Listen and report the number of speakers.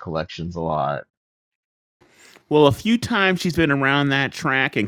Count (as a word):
two